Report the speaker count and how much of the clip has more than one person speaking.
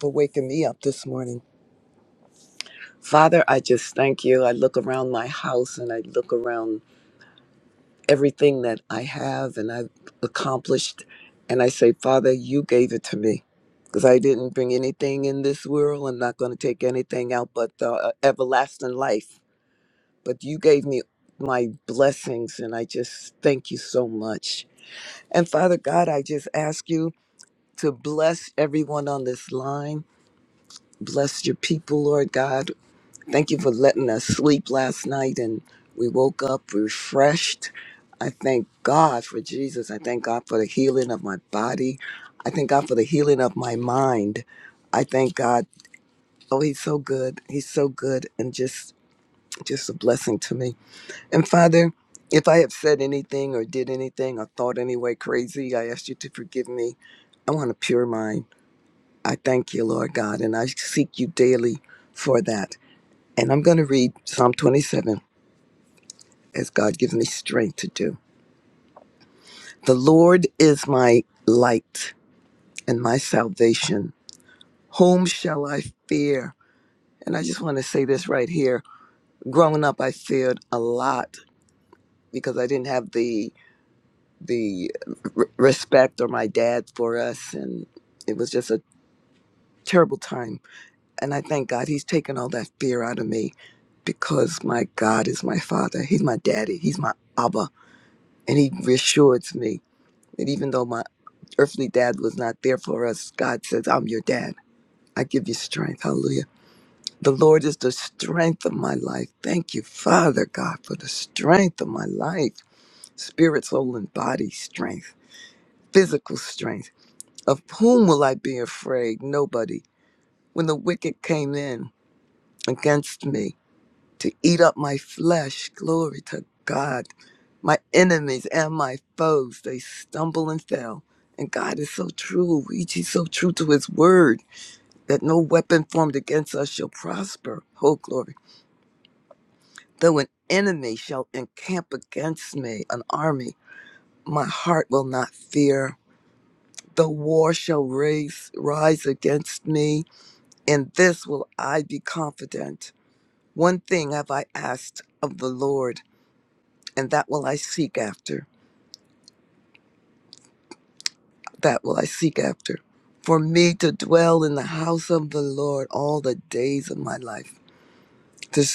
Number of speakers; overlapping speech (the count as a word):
one, no overlap